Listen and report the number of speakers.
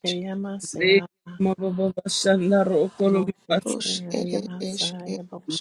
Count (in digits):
3